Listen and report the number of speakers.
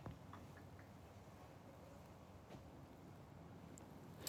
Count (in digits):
0